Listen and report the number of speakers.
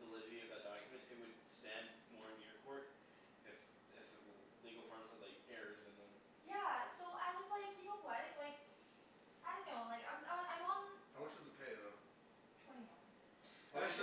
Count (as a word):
three